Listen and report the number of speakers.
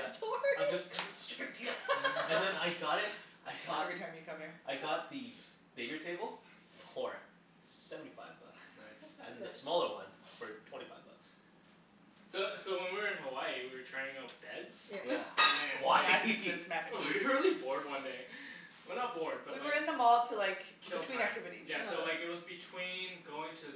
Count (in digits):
4